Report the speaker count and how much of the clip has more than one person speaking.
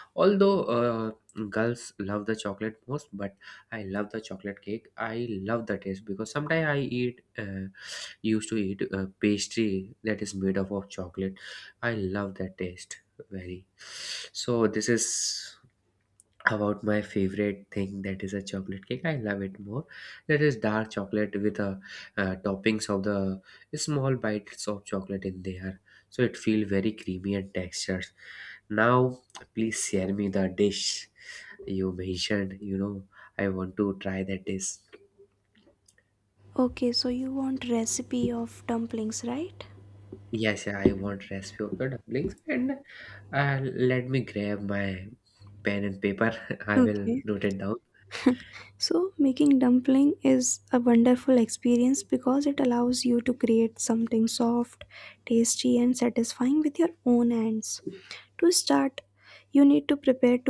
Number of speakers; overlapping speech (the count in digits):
2, about 1%